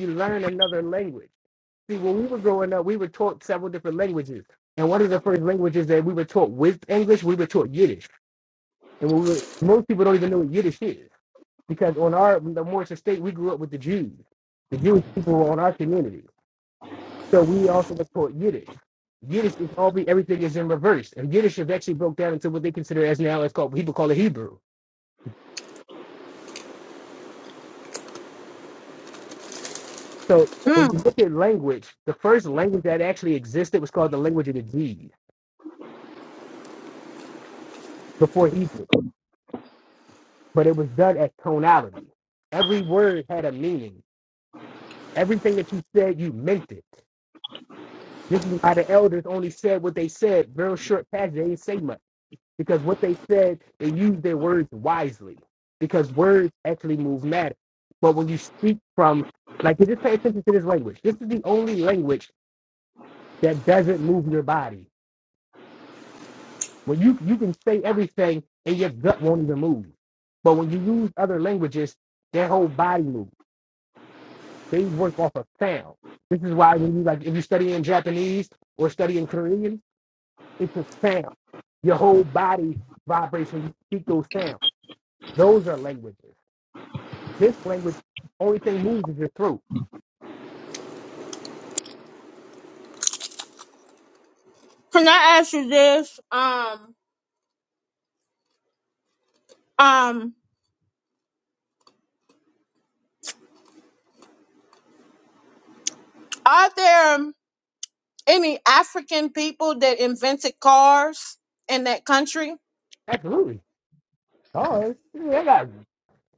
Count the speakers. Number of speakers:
two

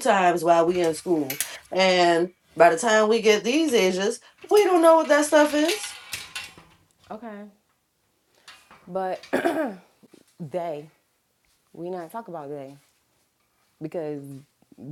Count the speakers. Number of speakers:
two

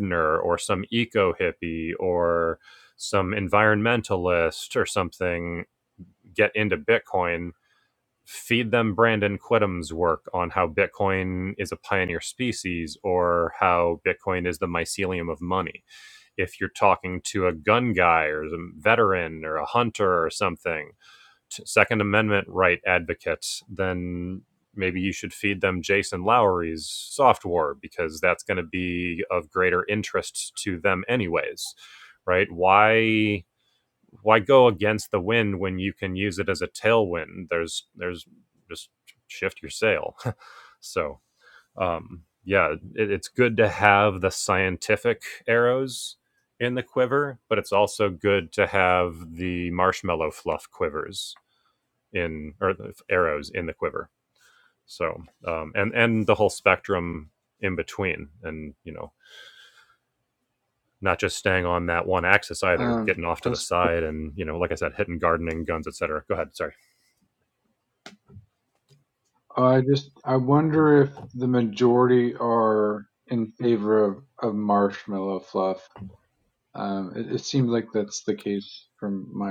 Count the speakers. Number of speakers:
two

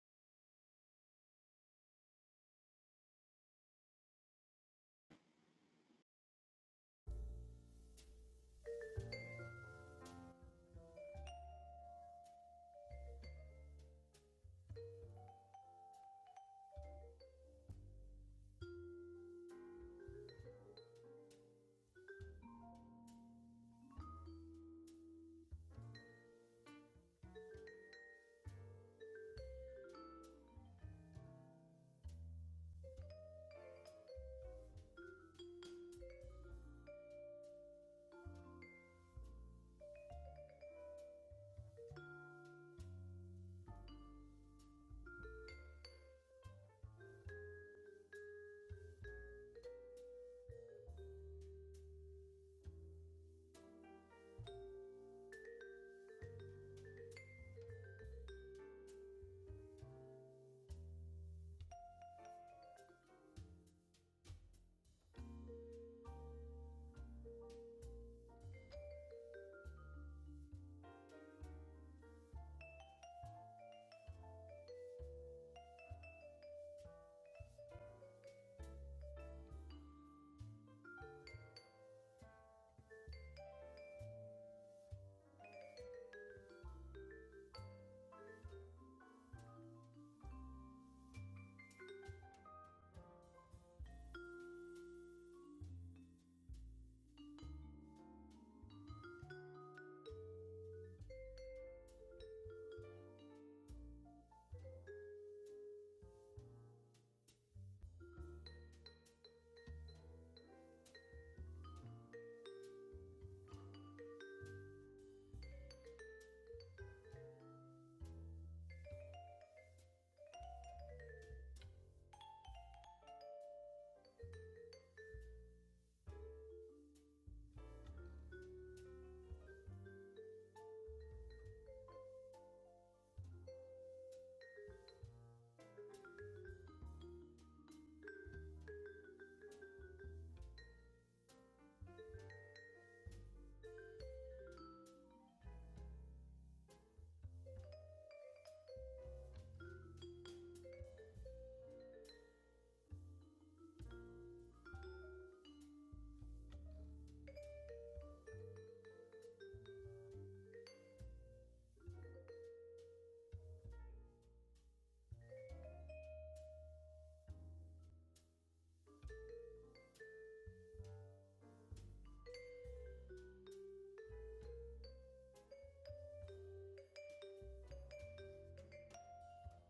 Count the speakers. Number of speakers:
zero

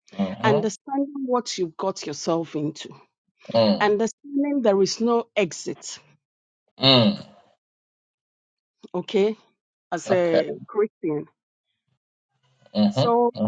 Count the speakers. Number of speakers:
two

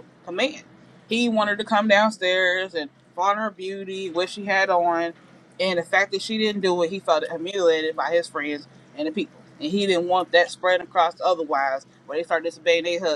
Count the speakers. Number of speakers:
one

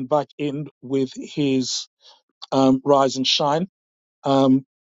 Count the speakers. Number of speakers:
one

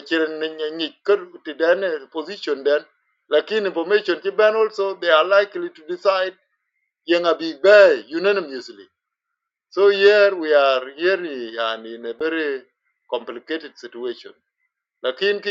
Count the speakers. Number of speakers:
one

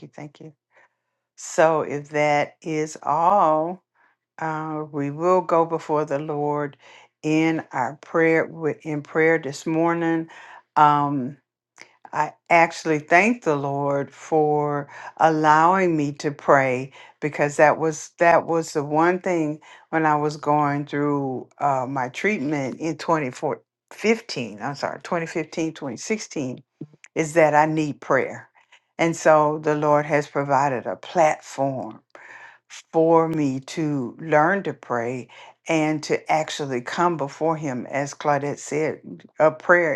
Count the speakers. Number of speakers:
one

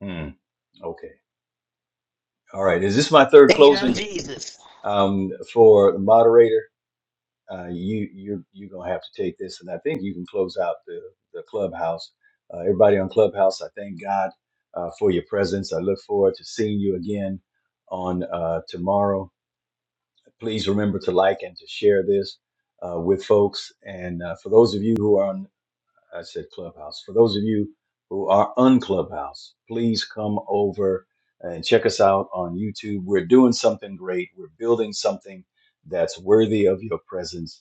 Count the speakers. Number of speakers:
two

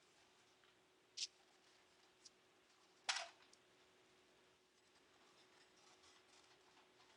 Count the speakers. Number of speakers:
zero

